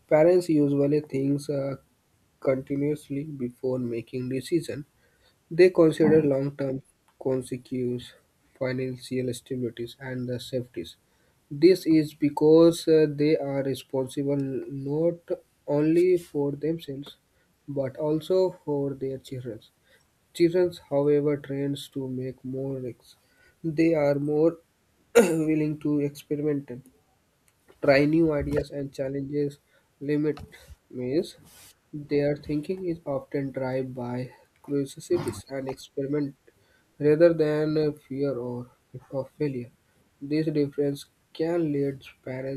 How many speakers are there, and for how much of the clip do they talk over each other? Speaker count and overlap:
one, no overlap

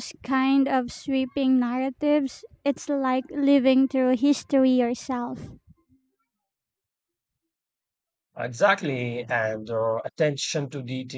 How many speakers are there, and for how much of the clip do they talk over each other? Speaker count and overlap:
two, no overlap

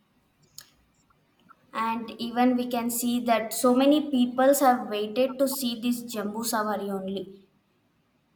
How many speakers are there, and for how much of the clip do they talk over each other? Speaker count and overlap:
one, no overlap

